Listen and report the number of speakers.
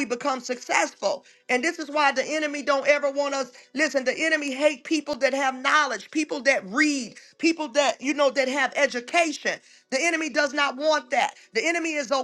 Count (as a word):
one